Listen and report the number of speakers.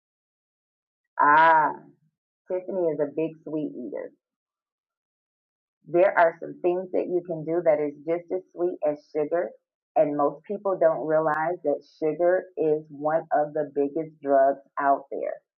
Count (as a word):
one